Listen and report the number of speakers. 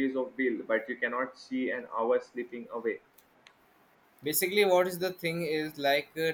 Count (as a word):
two